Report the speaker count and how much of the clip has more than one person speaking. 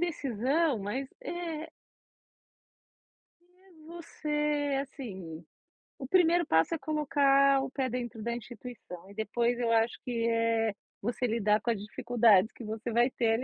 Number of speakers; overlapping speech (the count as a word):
one, no overlap